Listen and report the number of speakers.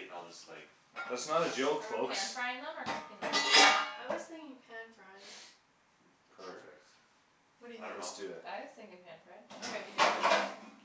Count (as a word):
four